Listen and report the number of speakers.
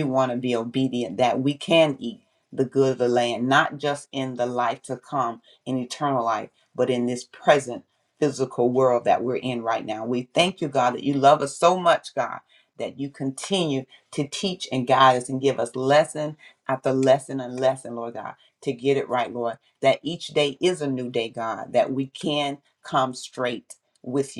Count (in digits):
1